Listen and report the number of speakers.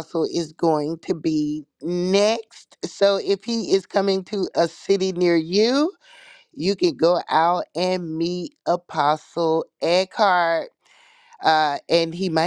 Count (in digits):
1